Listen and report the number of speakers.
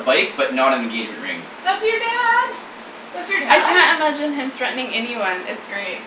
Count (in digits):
3